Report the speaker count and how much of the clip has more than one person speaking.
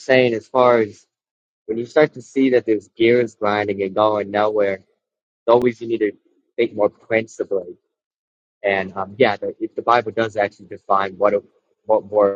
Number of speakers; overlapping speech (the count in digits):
1, no overlap